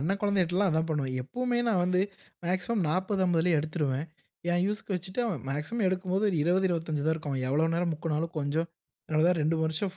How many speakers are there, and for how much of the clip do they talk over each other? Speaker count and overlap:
one, no overlap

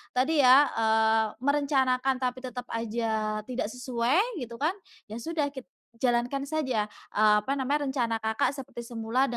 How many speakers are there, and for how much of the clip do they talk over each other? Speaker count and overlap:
one, no overlap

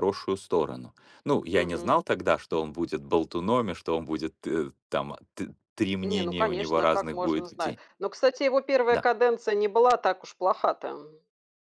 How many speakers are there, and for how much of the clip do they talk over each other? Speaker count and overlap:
two, about 19%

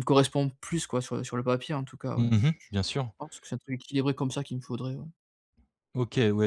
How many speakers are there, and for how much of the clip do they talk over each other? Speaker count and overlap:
two, about 8%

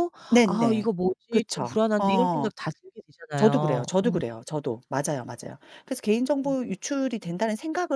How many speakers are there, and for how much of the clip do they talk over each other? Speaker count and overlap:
two, about 31%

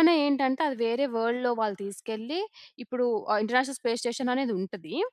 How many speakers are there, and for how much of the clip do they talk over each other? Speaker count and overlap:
one, no overlap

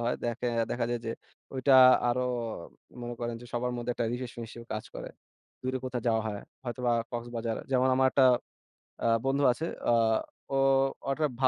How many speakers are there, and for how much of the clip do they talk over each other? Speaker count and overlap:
one, no overlap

